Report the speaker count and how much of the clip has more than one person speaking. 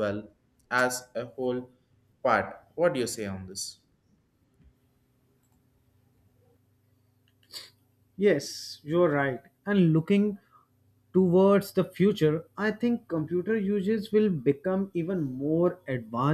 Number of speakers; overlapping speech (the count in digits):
2, no overlap